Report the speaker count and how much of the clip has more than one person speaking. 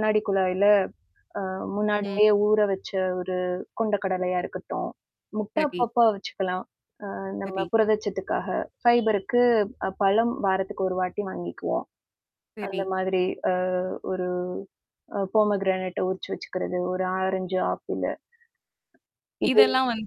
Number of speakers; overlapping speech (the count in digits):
2, about 6%